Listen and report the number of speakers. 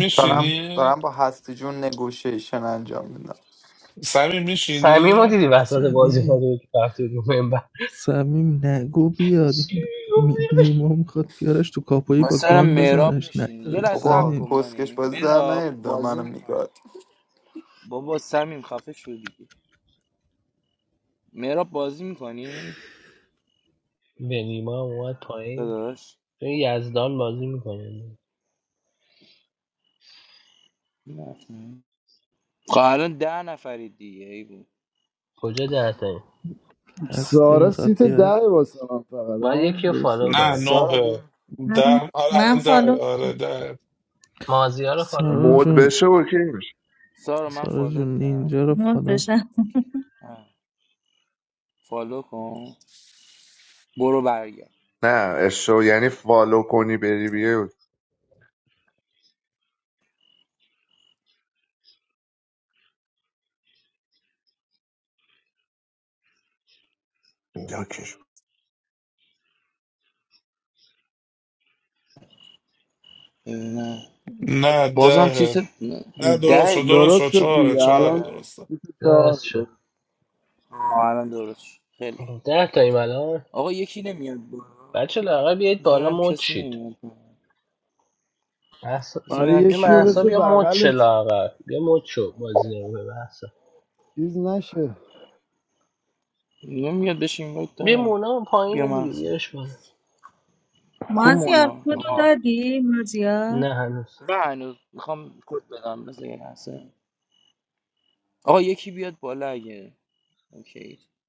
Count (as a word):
eight